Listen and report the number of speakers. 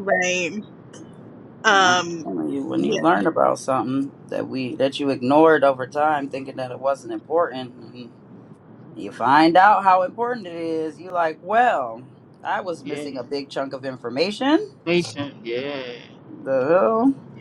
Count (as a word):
three